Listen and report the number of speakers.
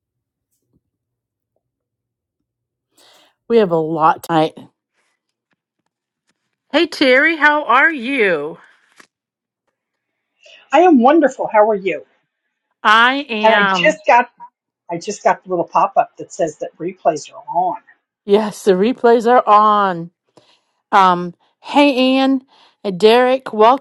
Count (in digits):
2